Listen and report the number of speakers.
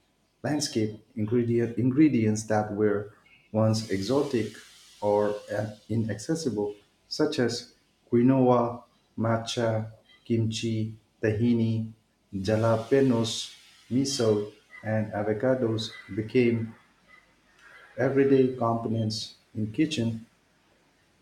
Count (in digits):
1